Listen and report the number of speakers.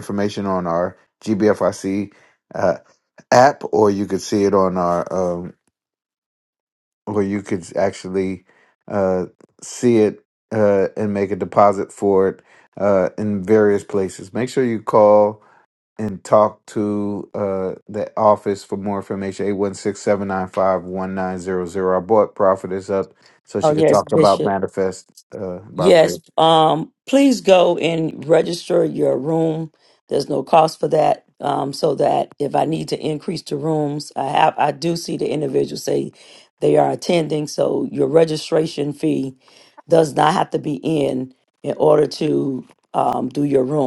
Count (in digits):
2